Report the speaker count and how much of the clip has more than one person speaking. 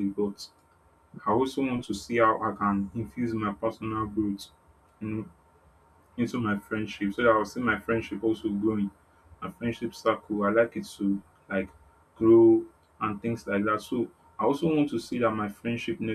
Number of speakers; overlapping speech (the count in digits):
1, no overlap